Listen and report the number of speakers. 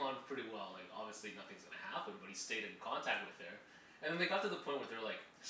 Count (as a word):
one